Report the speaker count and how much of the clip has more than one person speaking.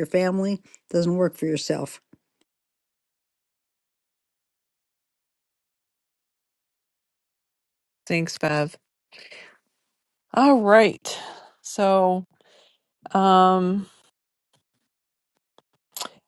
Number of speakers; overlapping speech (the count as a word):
two, no overlap